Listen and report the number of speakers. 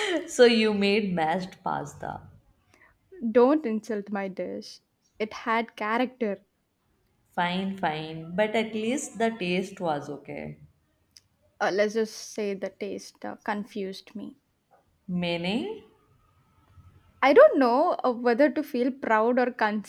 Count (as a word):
two